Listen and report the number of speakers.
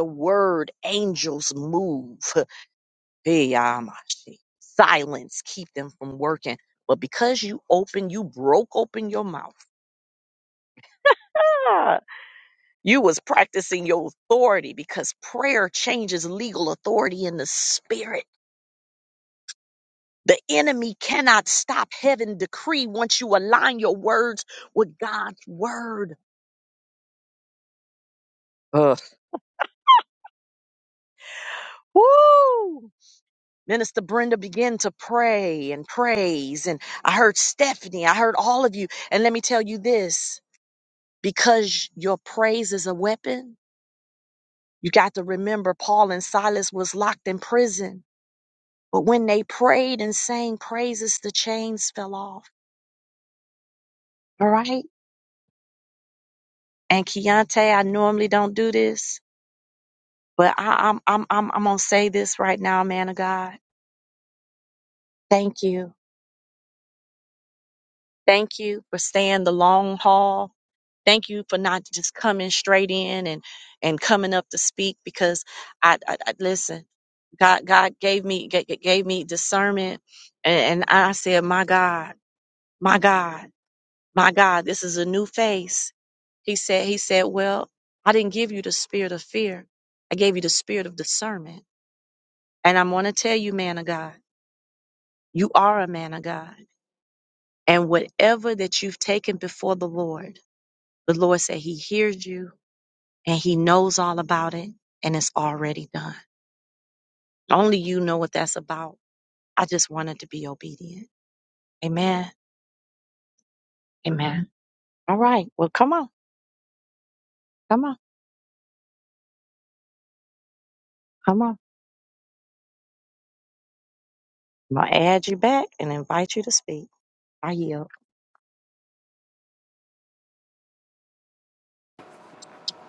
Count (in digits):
1